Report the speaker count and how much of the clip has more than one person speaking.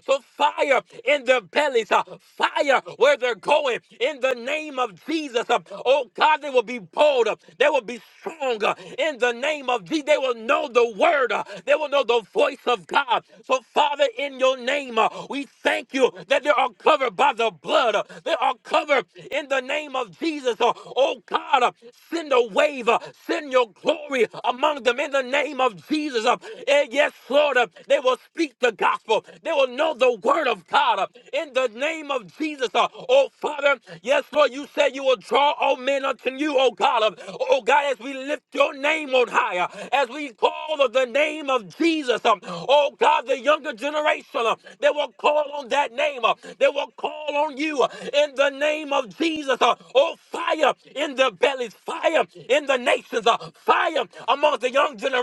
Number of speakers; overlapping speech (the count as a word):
one, no overlap